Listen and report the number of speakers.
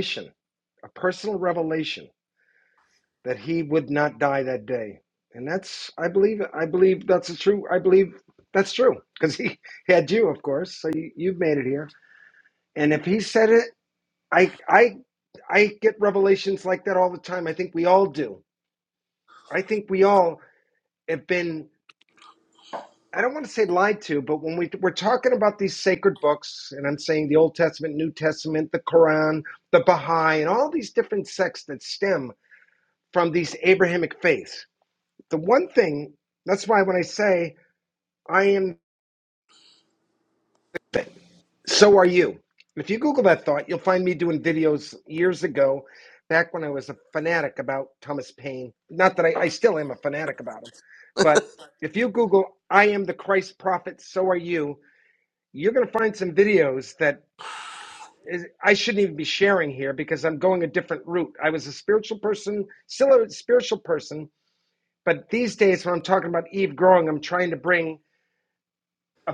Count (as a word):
one